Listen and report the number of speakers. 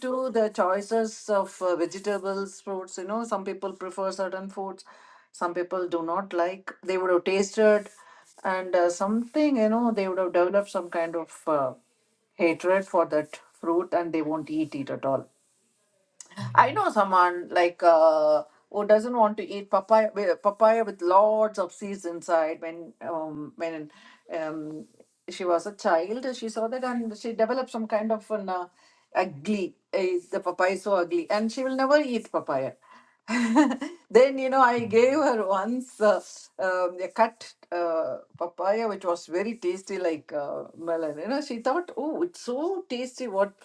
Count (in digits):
1